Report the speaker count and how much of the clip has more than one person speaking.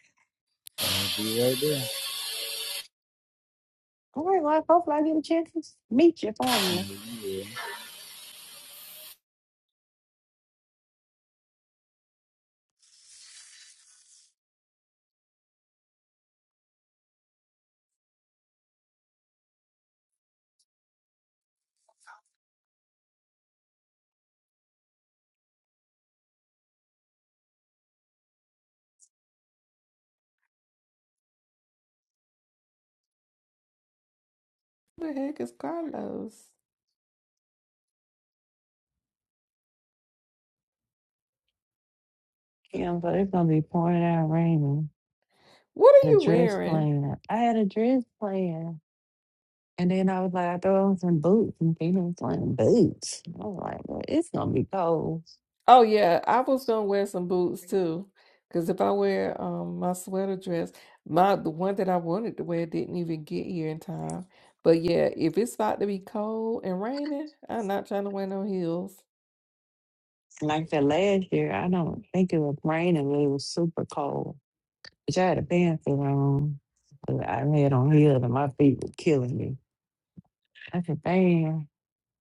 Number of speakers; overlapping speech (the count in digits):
3, about 1%